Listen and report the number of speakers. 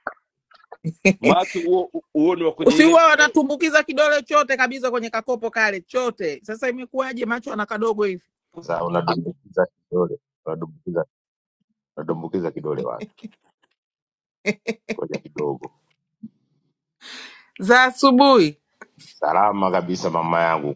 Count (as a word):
three